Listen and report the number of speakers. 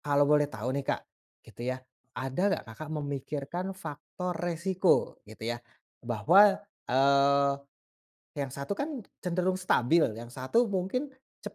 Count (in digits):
1